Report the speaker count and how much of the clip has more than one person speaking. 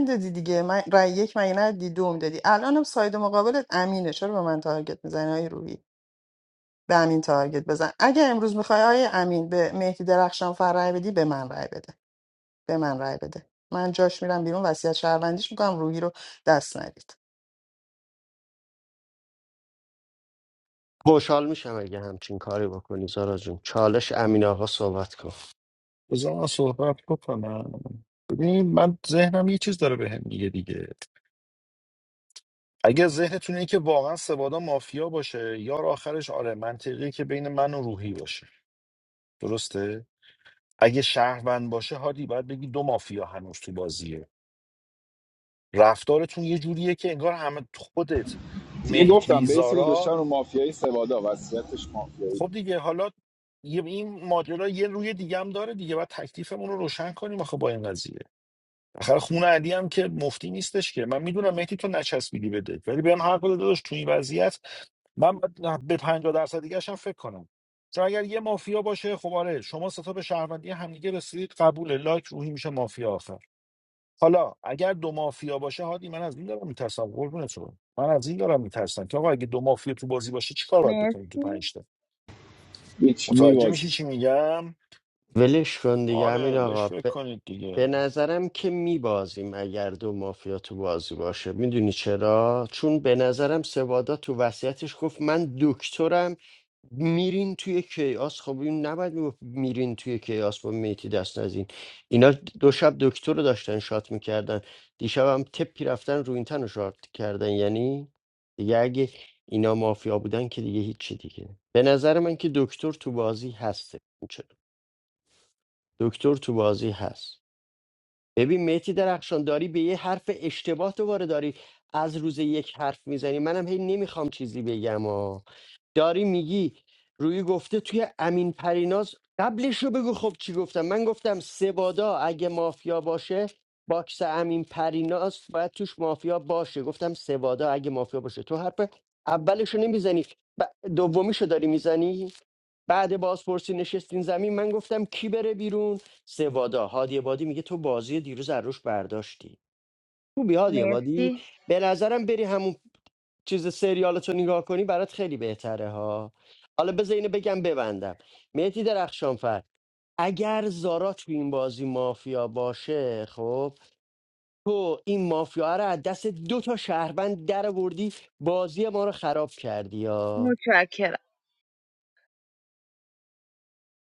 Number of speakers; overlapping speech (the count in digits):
5, about 3%